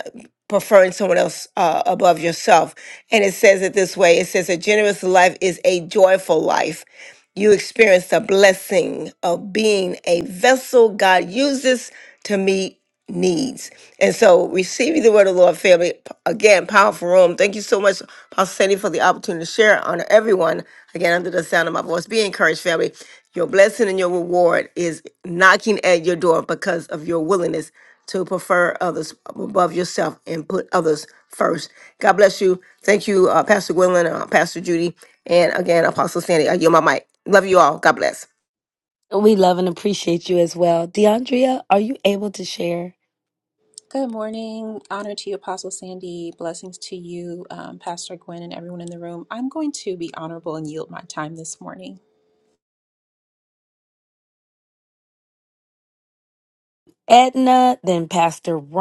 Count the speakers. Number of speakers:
3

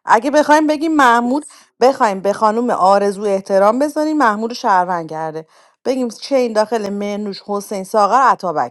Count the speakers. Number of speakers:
1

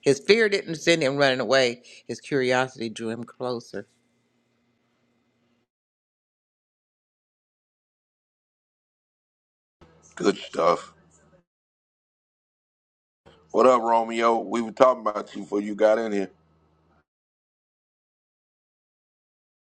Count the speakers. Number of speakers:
2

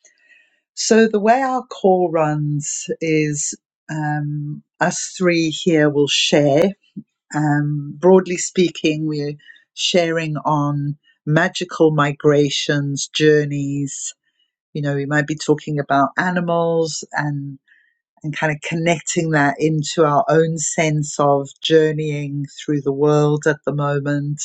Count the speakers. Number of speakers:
1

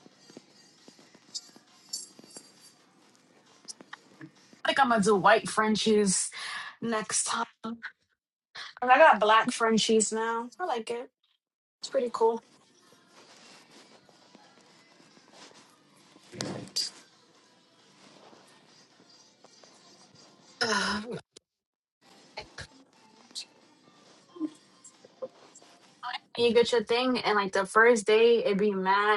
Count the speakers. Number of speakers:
1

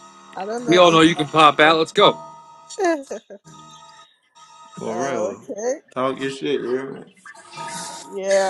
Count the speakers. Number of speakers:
3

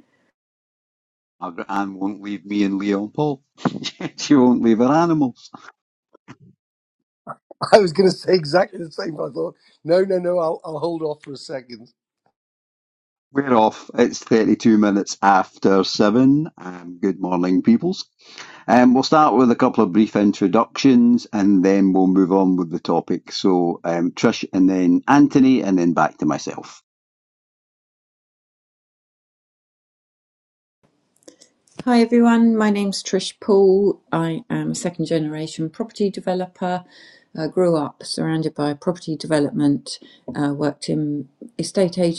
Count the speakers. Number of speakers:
3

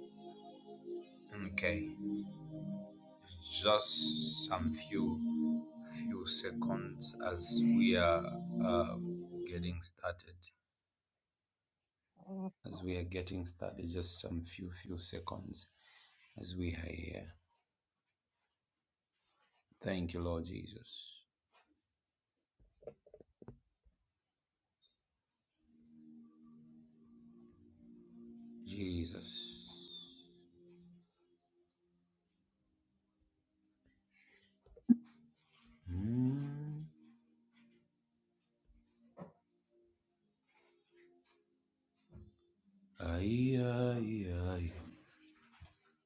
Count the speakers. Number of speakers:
1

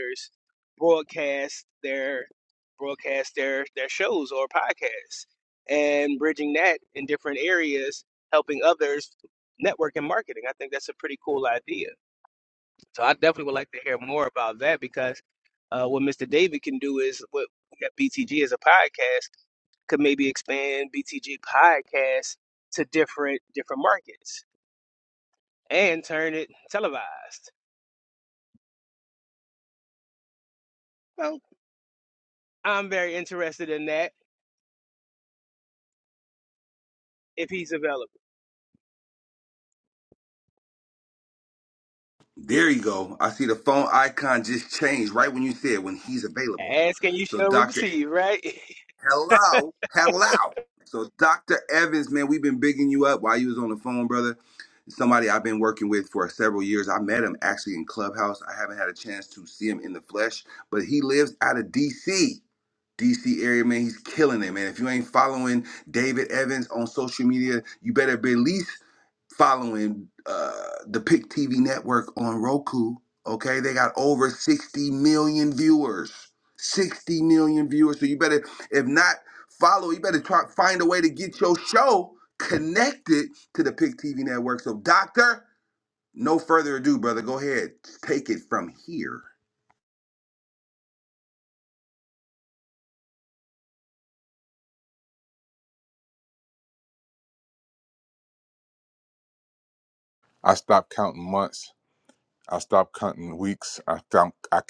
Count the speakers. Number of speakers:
3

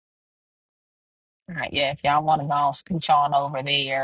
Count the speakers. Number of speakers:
1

